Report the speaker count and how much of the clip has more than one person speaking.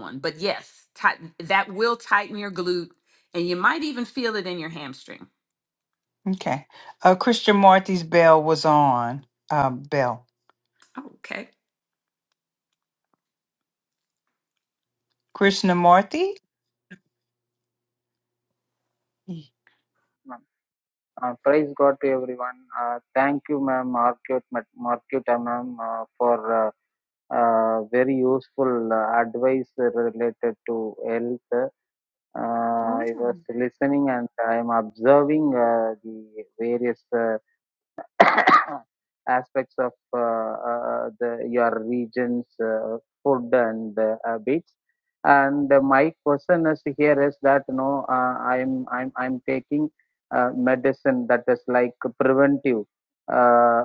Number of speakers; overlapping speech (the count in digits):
3, about 1%